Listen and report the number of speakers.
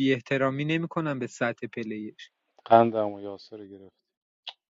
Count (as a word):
two